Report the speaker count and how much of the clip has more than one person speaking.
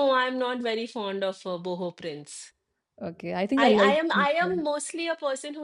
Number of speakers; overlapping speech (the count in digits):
2, about 19%